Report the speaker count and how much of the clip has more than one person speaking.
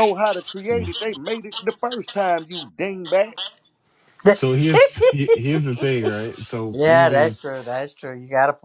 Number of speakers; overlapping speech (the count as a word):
three, about 9%